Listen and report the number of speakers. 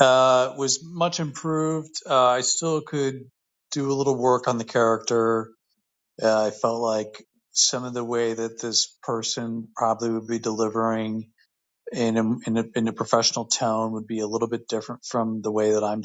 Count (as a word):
one